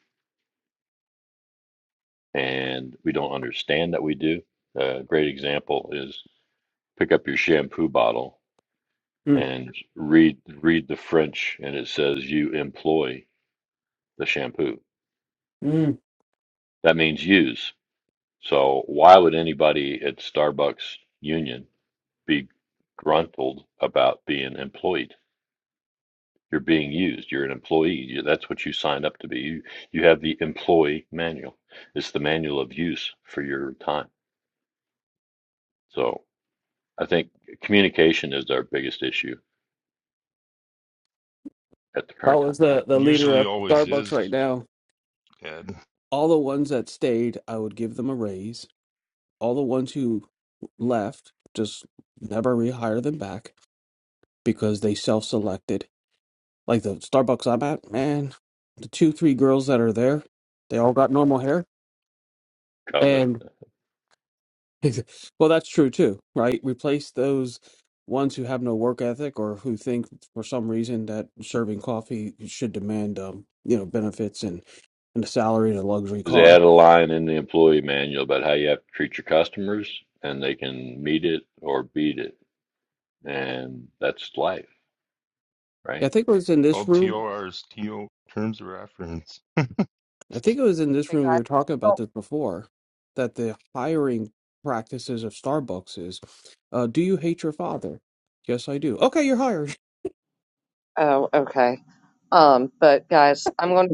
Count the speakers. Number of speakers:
four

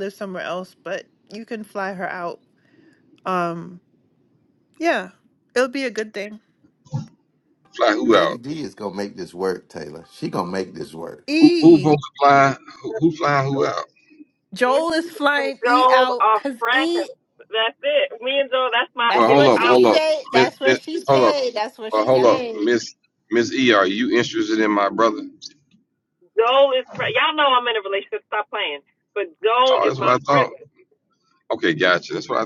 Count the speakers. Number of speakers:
four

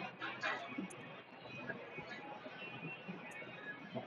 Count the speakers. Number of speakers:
zero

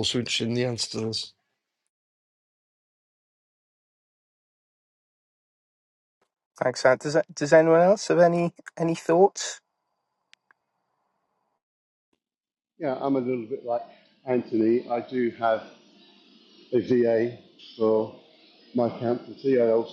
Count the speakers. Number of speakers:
three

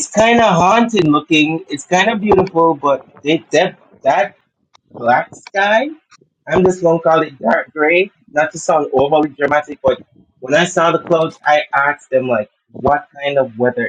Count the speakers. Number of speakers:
one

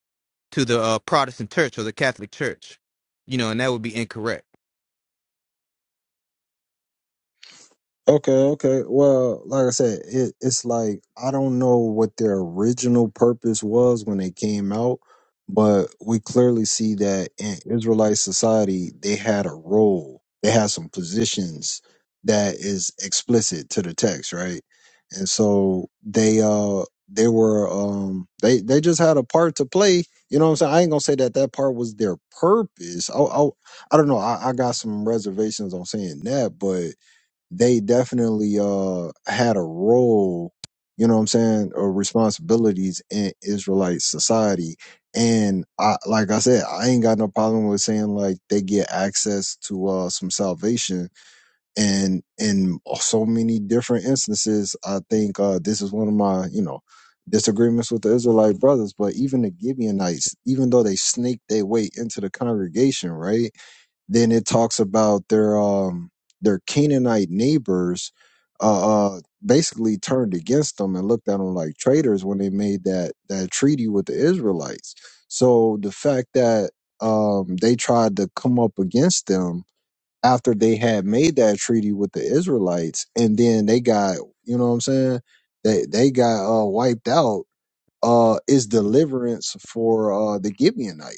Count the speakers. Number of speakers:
two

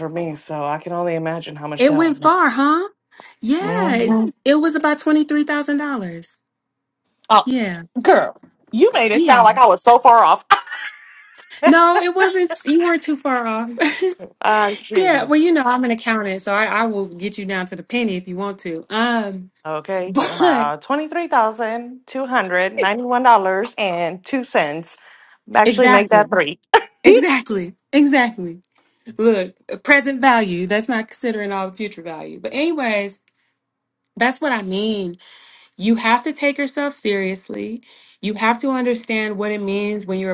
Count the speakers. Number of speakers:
two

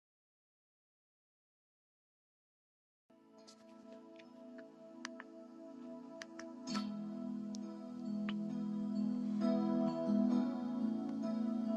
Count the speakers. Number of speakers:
zero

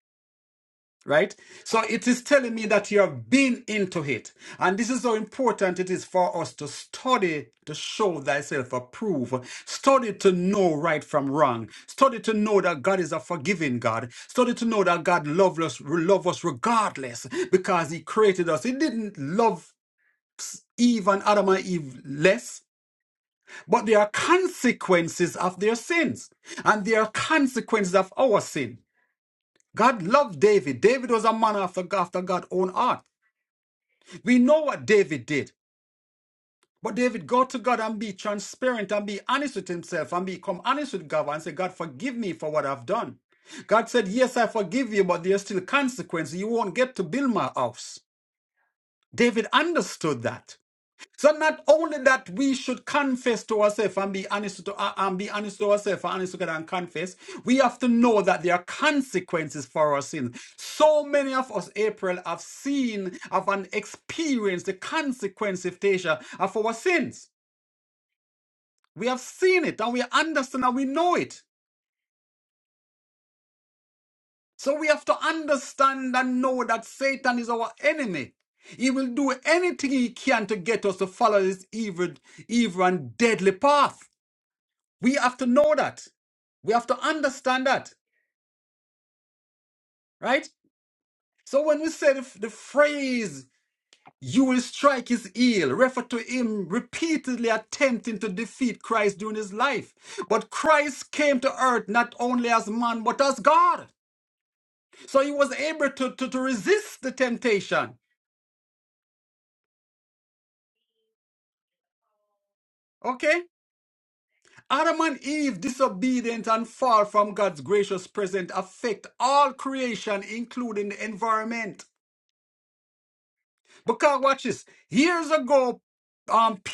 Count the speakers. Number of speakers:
one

